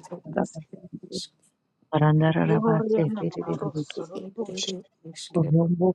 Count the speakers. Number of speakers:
three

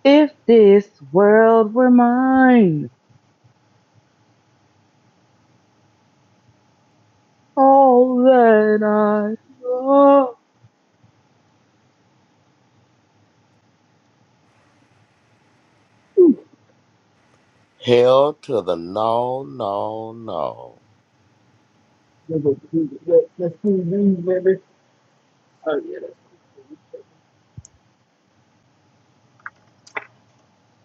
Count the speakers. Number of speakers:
three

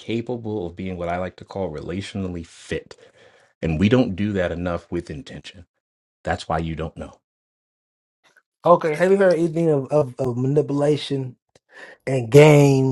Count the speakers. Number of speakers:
two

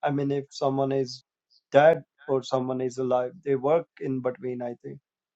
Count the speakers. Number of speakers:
one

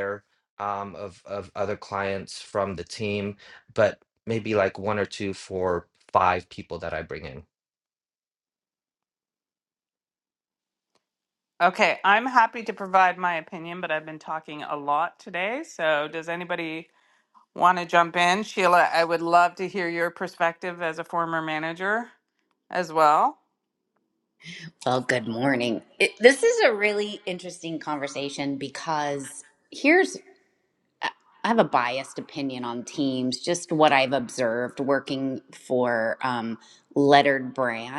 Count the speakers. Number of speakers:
three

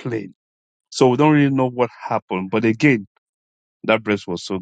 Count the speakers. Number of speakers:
one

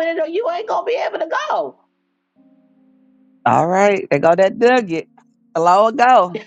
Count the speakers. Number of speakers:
two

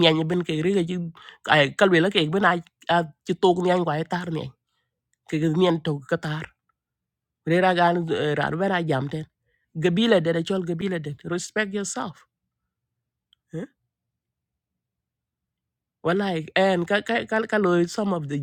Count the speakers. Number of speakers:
one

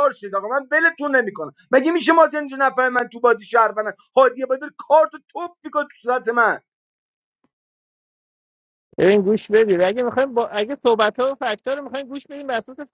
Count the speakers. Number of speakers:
two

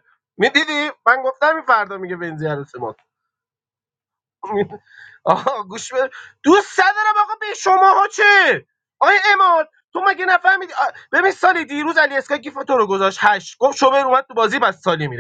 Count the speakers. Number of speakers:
one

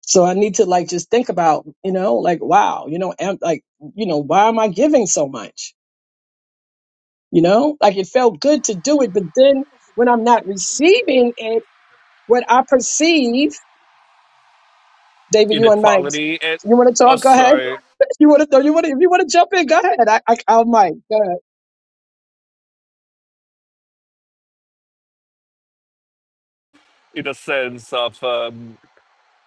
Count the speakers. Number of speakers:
two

